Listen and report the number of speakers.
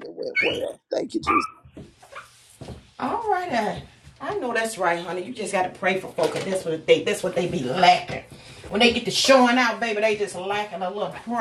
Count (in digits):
2